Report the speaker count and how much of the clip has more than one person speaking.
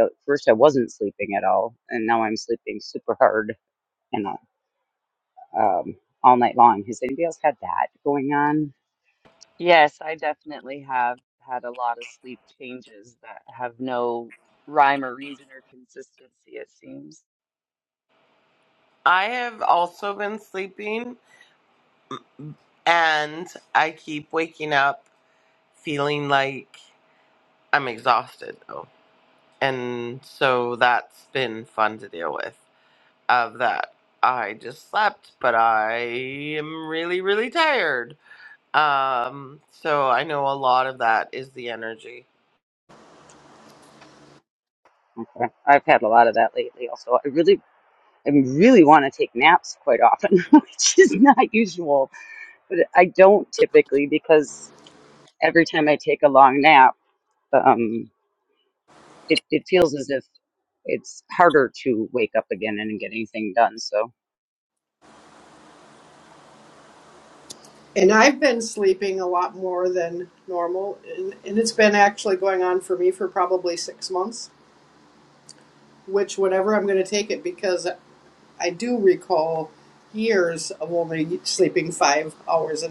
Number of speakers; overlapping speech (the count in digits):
4, no overlap